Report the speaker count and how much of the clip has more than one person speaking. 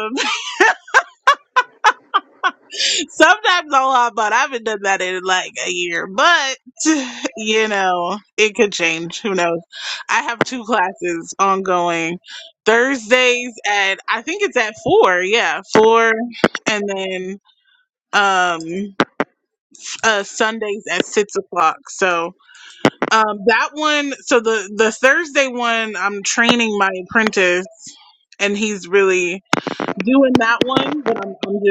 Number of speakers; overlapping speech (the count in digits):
1, no overlap